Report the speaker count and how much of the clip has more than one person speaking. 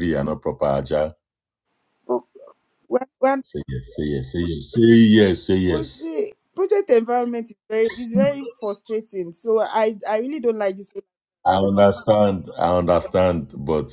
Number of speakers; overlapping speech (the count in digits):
2, about 2%